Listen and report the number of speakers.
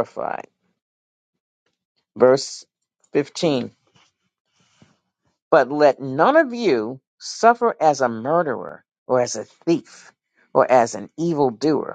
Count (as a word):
one